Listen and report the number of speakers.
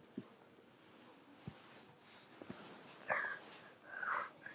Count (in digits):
0